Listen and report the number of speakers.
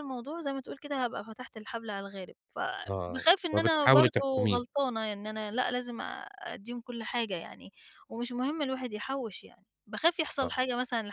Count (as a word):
two